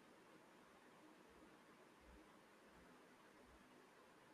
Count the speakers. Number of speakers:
0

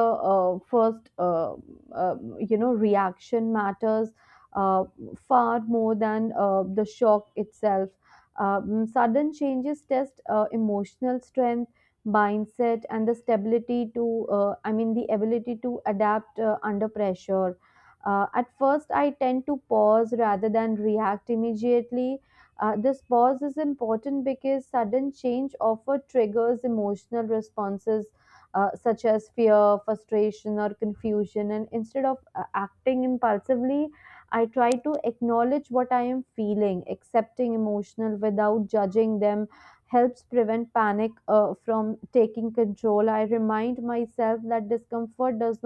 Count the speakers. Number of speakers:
1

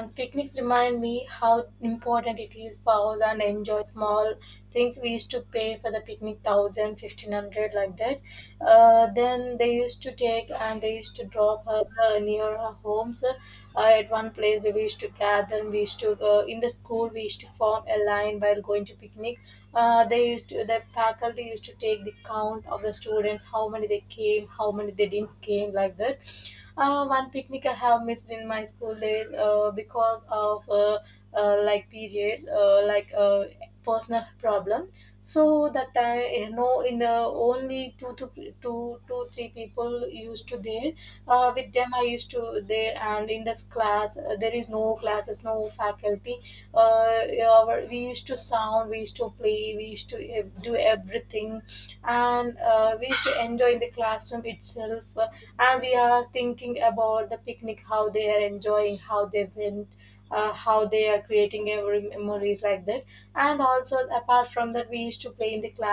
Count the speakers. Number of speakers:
1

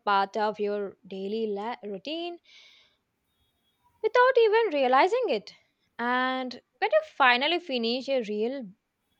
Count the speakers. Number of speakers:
1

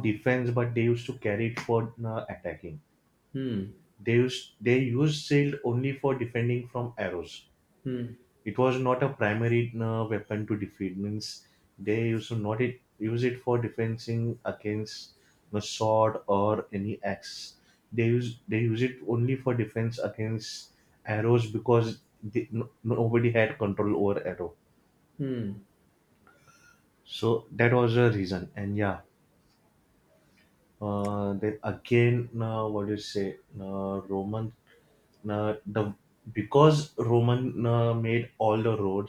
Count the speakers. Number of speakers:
2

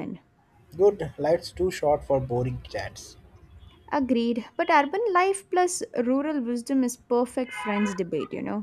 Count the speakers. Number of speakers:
2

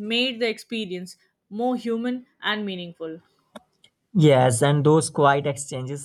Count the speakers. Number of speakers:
2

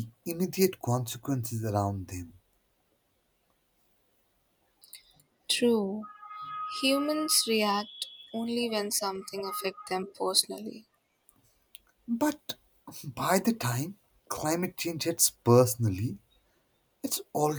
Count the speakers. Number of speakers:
2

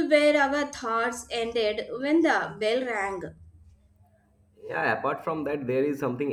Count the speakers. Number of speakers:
2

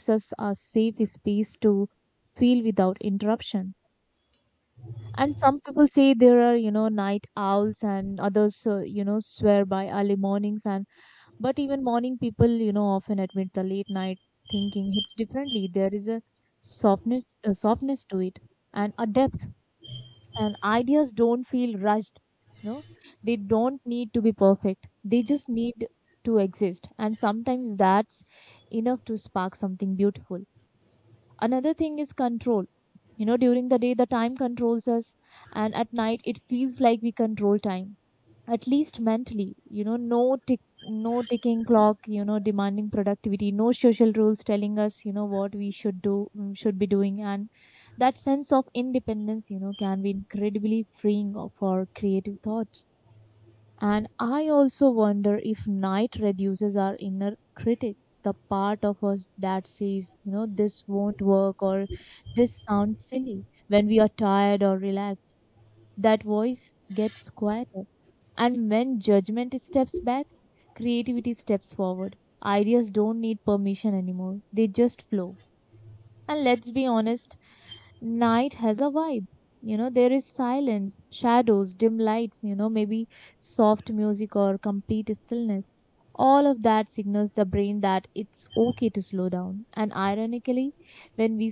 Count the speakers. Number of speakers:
1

